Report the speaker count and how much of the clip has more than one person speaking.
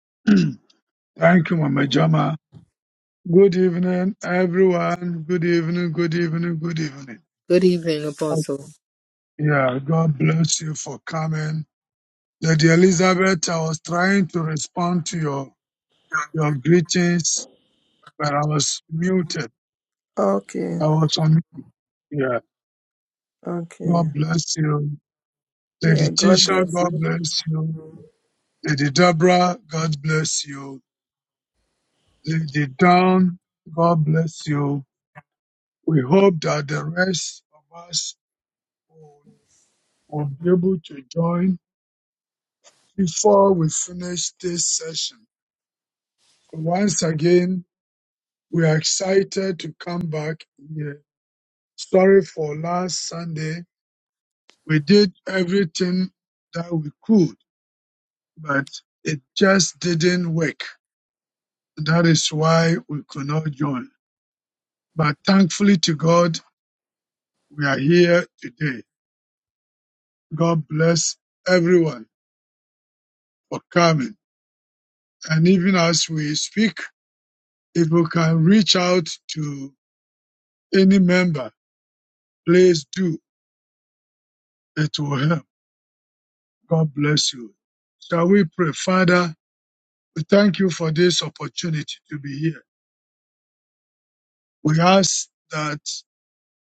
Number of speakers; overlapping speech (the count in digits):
3, about 1%